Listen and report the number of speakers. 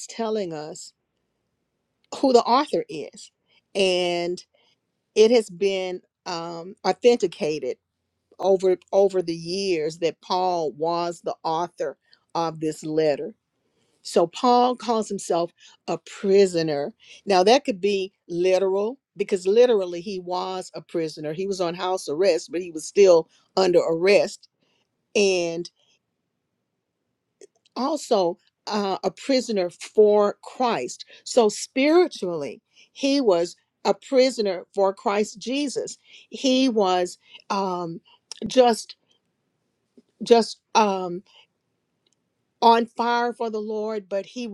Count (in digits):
1